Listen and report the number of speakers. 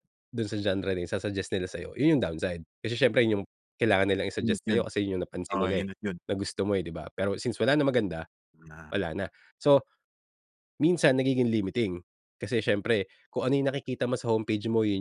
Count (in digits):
2